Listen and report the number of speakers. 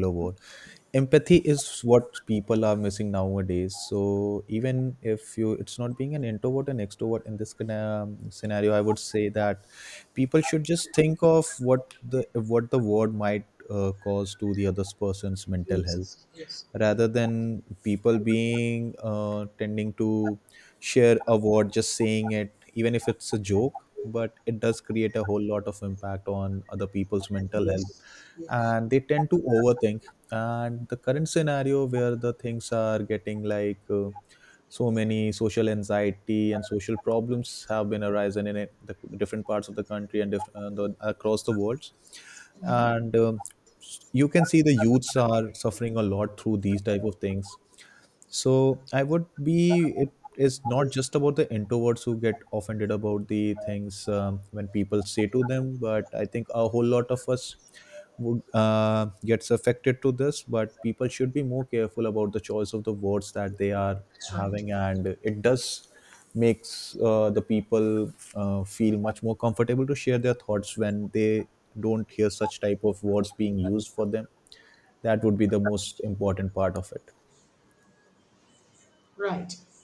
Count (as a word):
two